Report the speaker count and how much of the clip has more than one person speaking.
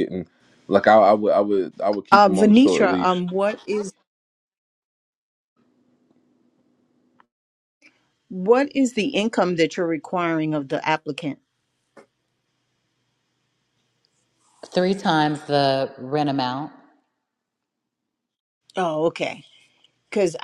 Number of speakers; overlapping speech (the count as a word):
three, about 5%